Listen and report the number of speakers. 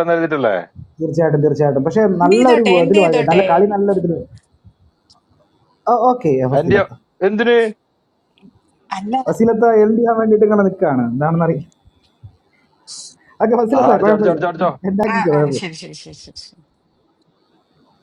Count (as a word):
three